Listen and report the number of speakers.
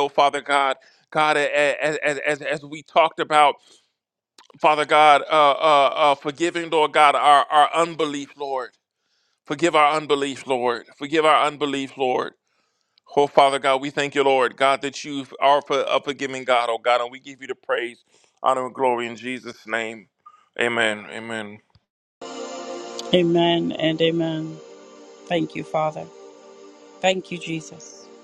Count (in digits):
2